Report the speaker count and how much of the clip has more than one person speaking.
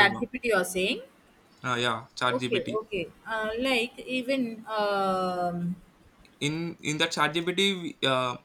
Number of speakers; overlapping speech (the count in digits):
2, about 8%